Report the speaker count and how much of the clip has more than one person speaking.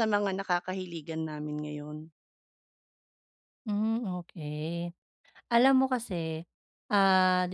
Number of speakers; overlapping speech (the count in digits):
2, no overlap